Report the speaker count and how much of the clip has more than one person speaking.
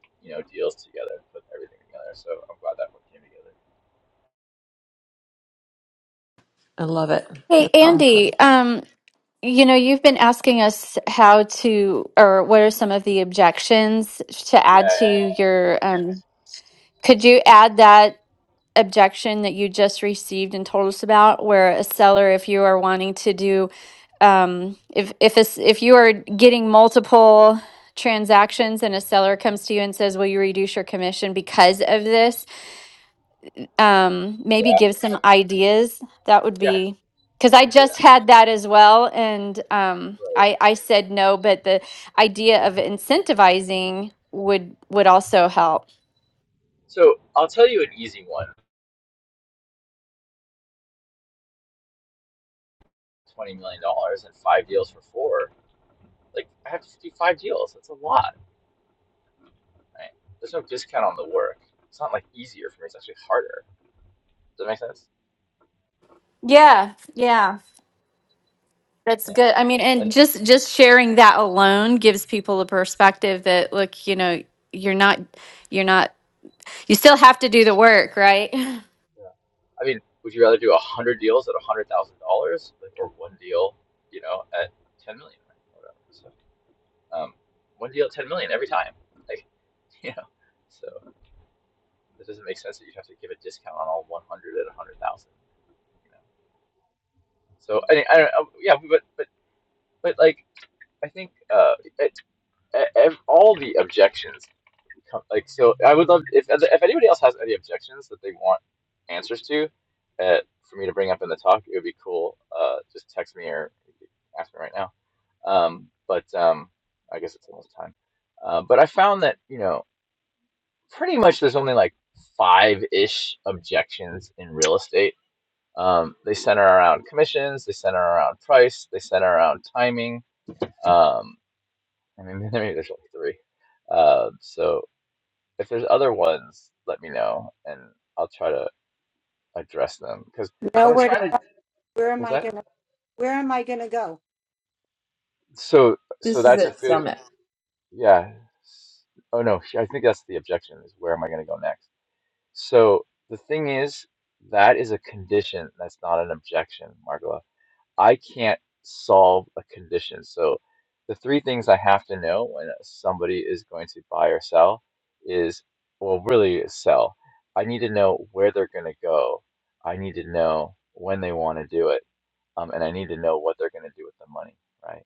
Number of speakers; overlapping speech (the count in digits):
4, about 3%